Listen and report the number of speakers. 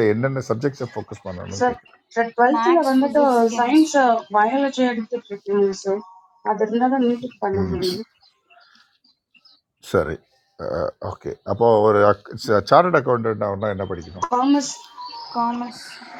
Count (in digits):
3